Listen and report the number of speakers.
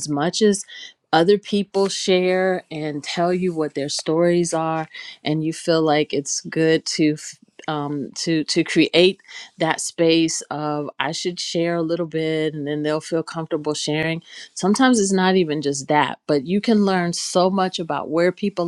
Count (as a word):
one